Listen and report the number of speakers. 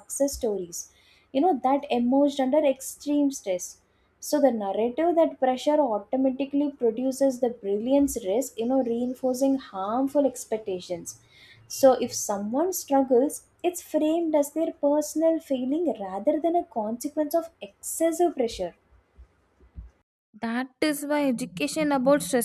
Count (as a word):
two